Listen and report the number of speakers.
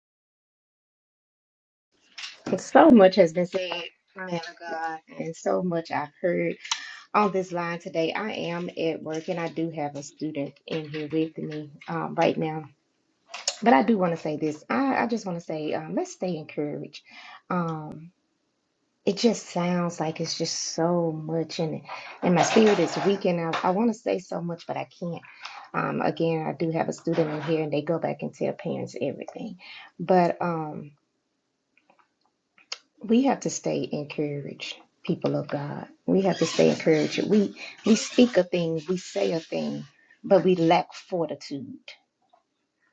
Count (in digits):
1